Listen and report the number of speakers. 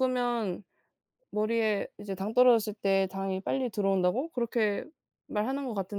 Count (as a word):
one